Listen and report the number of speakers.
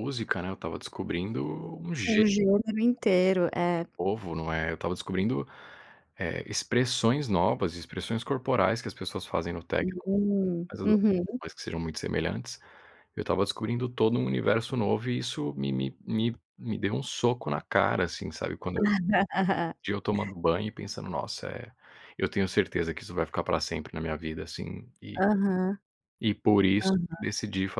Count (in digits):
2